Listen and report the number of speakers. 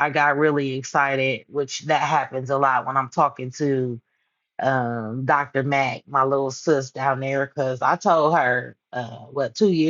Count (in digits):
1